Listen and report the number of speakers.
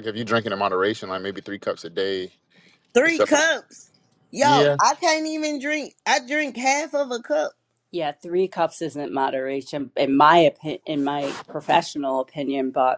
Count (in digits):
3